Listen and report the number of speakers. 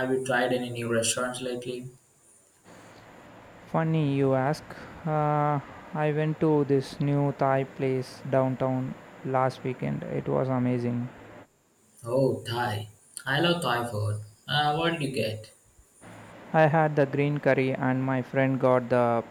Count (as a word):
two